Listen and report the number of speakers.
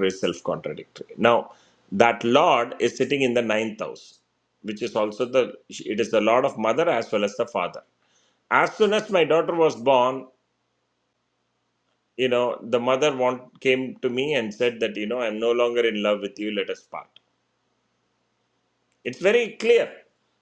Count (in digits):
1